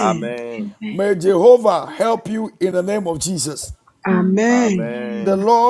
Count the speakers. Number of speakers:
3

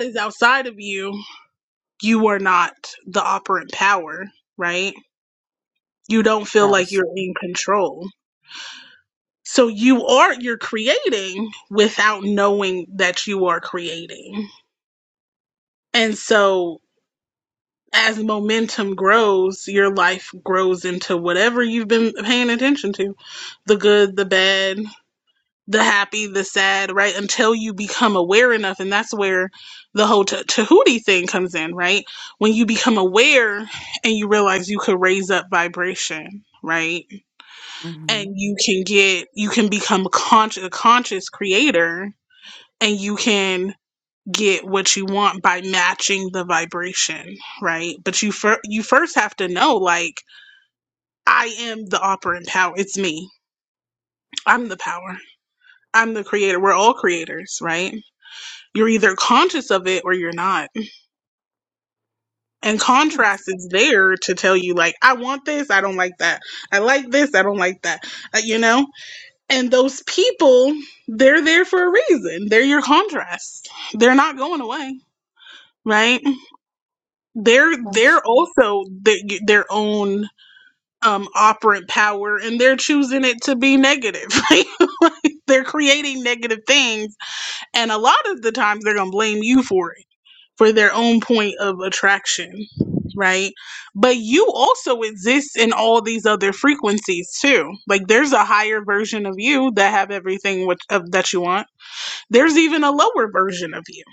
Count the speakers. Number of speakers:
1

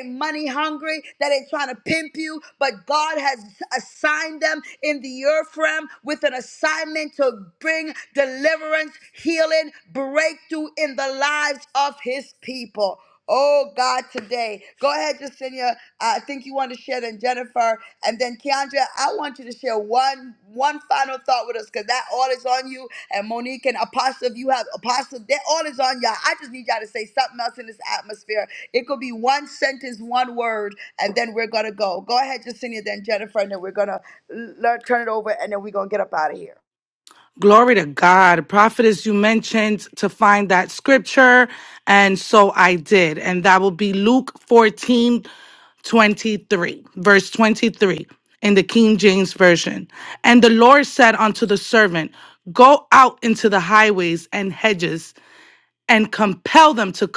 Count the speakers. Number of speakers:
2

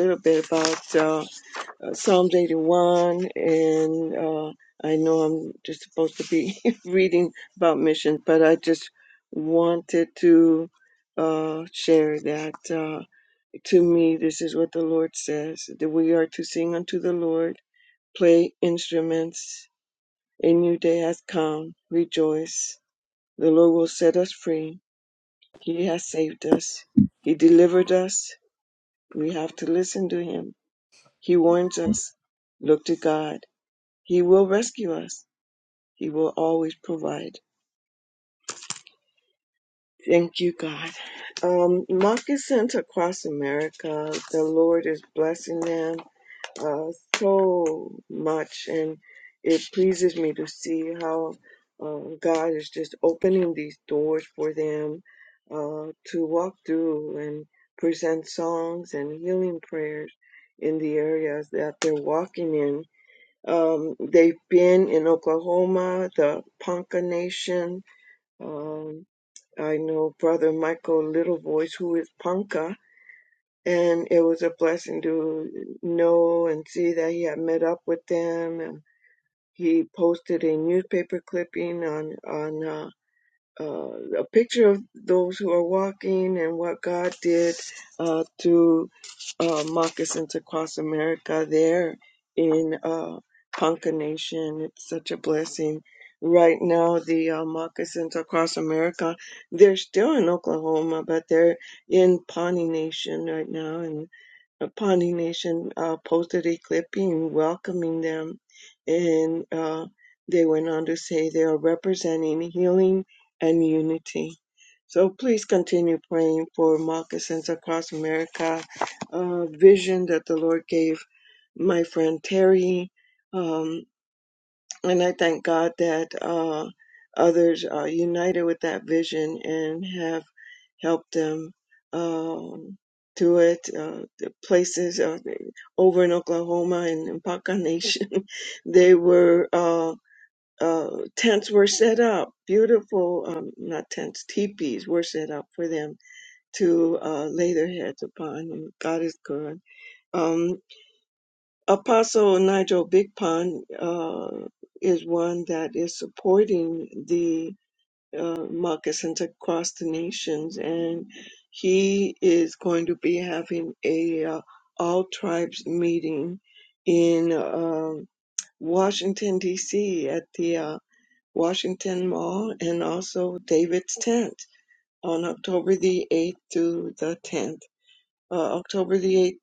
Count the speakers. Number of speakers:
1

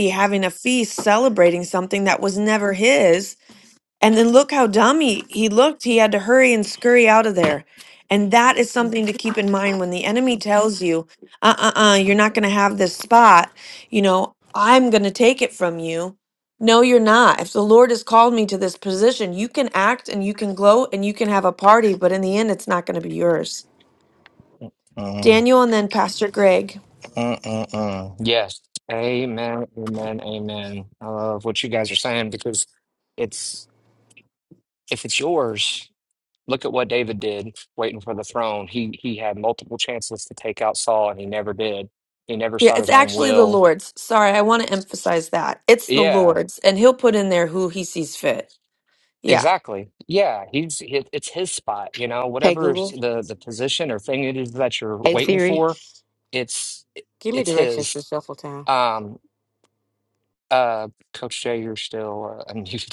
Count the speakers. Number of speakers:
3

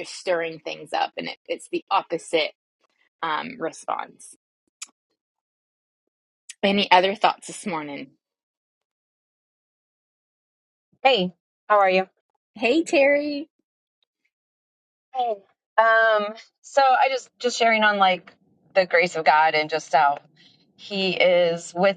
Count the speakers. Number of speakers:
2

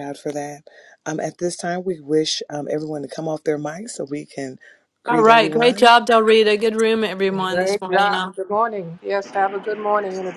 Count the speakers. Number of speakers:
3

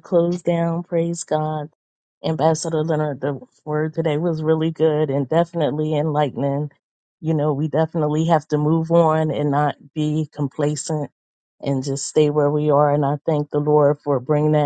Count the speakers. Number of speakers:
1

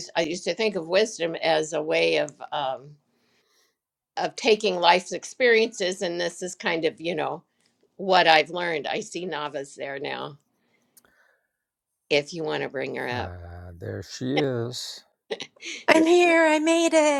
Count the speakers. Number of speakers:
3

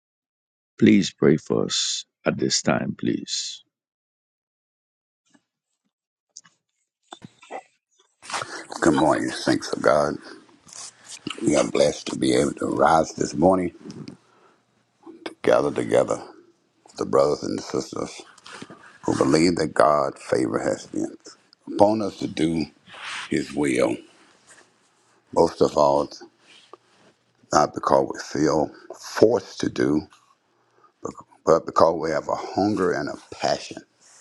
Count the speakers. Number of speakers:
2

